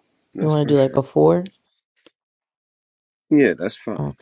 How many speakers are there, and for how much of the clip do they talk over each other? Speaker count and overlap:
2, about 16%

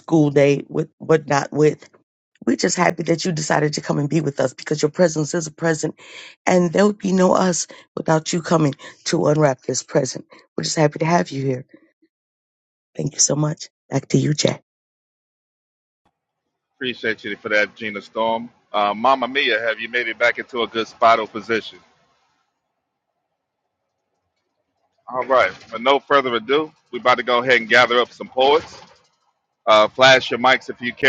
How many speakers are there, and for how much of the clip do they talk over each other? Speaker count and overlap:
2, no overlap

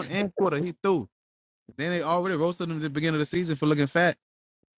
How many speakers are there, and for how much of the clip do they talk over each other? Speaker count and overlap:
1, no overlap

